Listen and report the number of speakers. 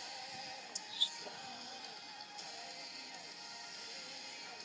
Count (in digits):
0